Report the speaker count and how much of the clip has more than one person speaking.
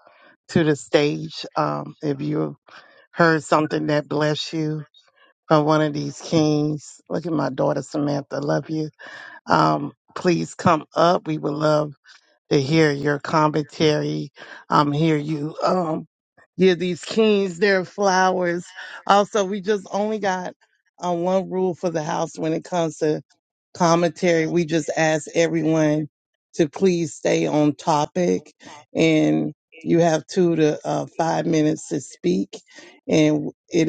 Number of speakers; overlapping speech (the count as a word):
one, no overlap